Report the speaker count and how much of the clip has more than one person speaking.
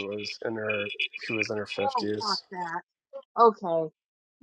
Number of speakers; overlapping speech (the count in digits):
2, about 11%